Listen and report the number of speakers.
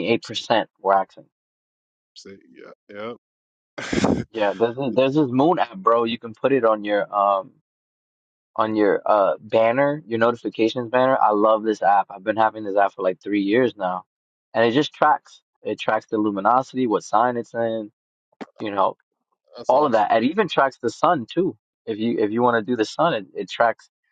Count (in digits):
2